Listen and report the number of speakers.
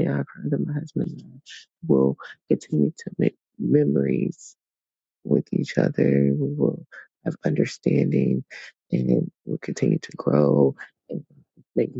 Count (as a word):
one